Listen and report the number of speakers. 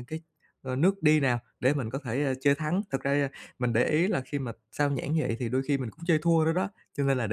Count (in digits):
1